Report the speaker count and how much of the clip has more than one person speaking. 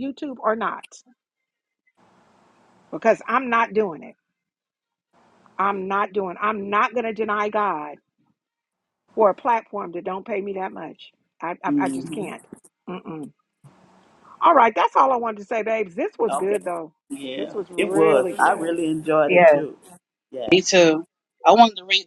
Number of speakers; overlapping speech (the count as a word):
three, about 12%